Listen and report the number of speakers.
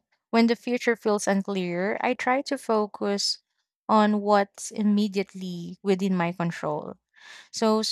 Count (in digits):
1